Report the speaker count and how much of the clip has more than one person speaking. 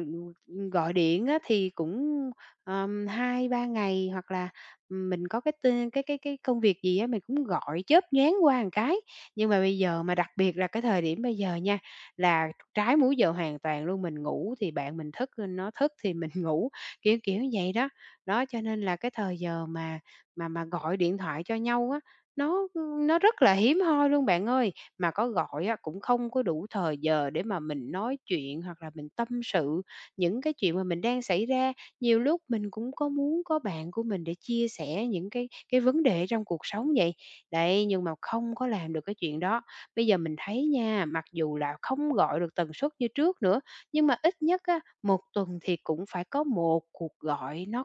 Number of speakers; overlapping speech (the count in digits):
1, no overlap